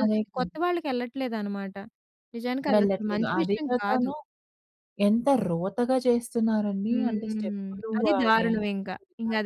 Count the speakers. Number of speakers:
2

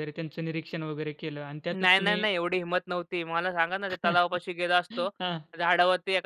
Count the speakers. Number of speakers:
2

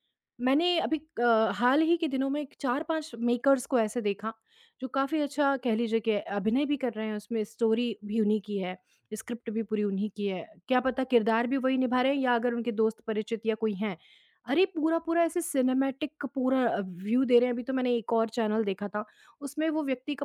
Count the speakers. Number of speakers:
1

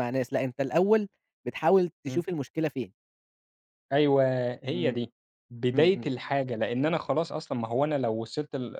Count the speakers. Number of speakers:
2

